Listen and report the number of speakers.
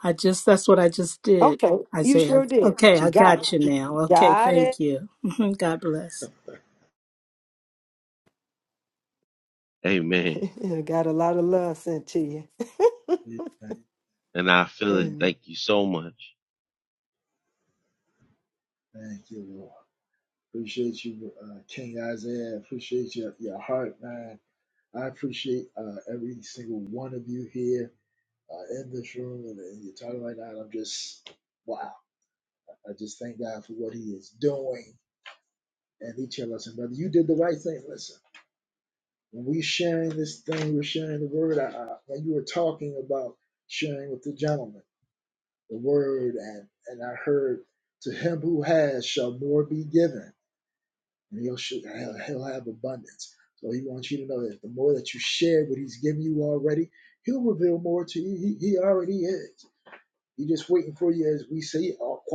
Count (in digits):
4